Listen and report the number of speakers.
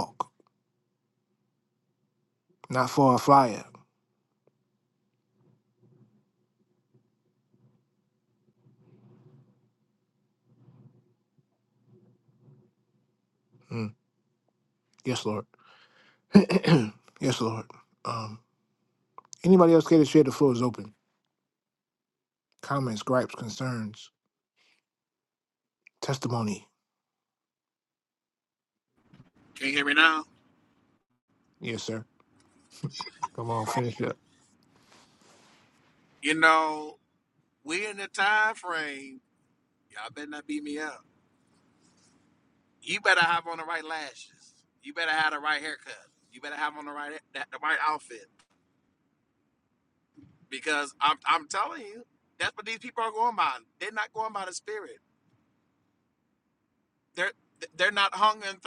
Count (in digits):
2